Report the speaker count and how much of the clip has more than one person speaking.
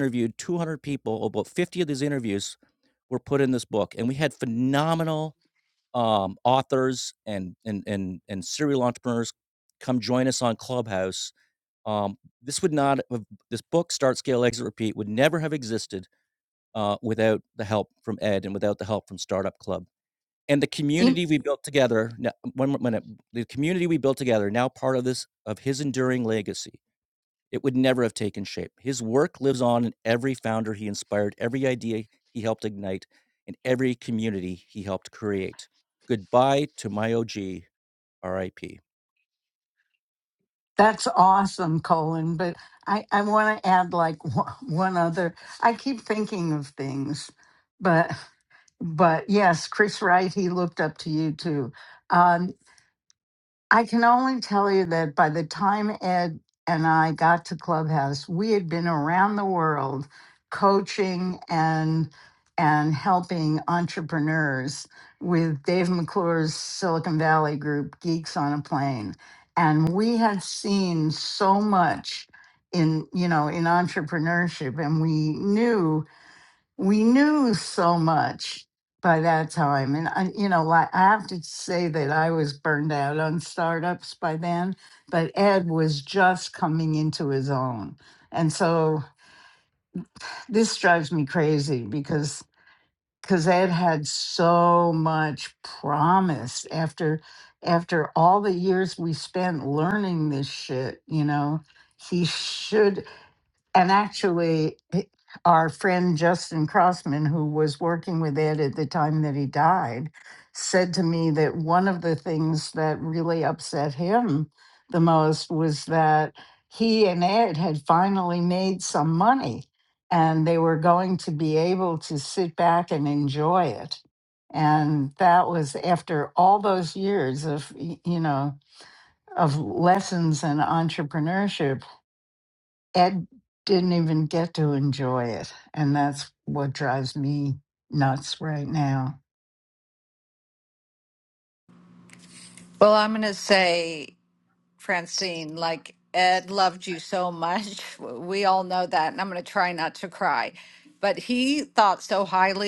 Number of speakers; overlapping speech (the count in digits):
3, under 1%